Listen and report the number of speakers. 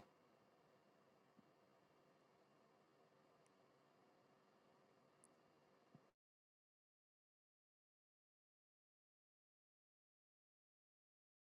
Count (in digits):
0